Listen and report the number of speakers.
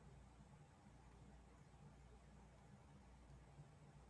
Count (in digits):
0